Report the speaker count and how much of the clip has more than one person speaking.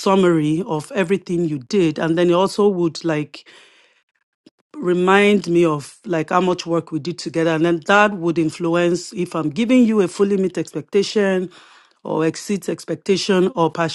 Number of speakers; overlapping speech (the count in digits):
1, no overlap